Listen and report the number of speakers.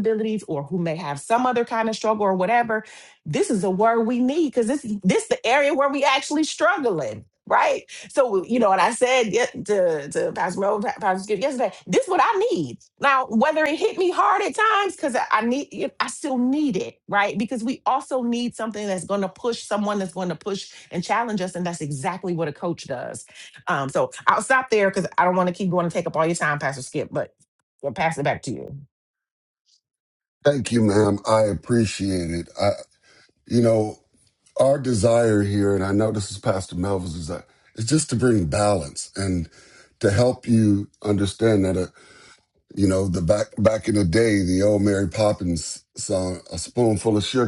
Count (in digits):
2